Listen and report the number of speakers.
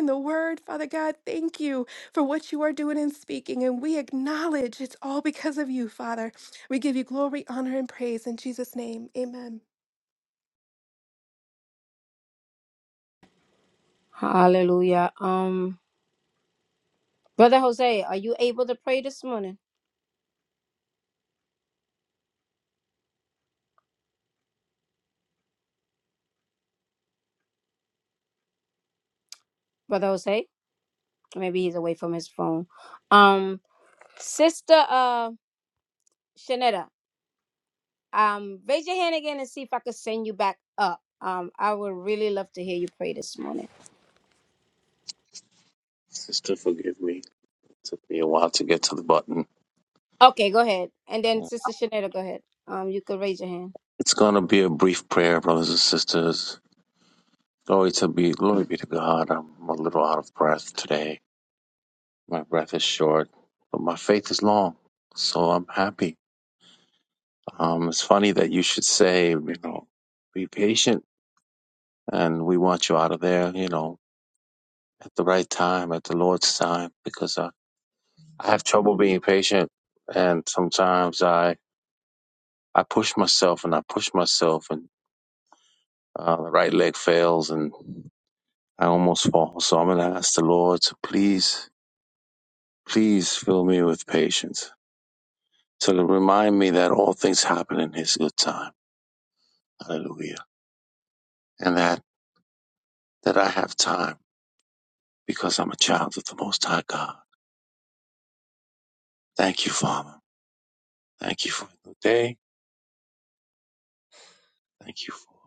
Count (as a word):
three